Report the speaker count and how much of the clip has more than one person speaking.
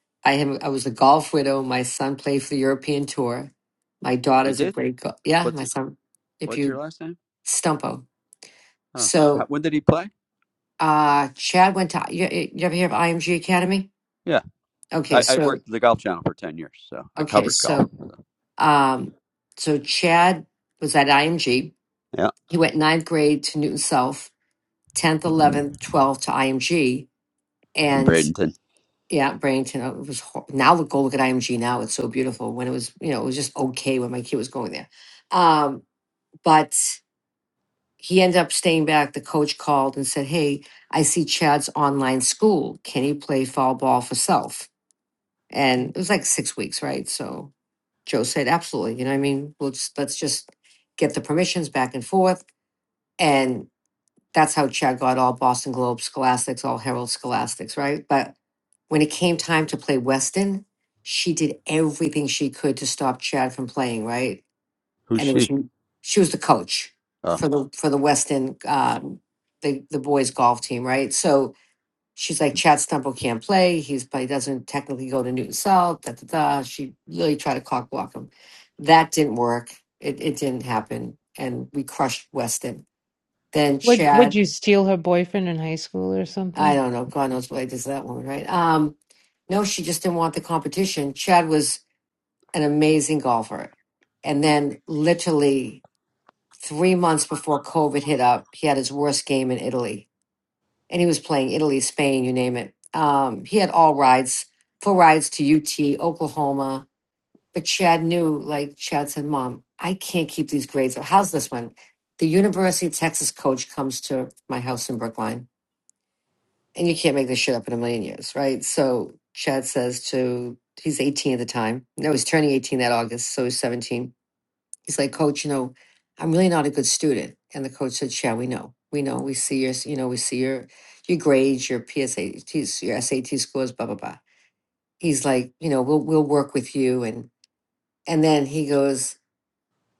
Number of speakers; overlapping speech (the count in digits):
3, about 3%